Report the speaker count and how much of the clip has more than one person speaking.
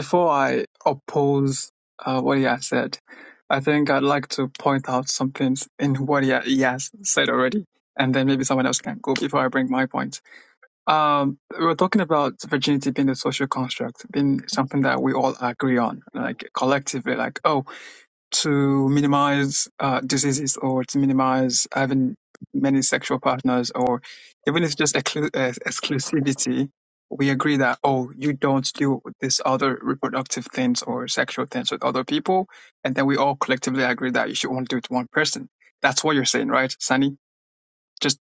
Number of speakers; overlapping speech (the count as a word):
one, no overlap